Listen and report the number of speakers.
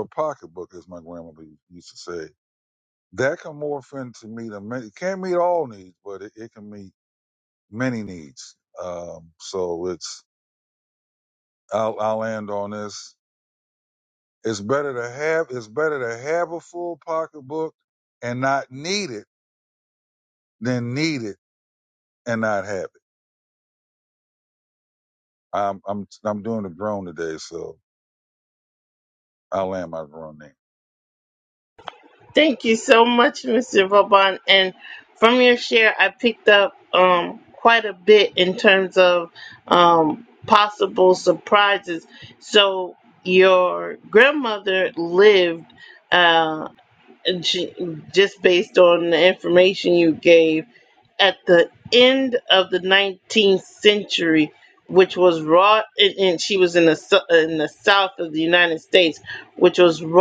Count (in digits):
2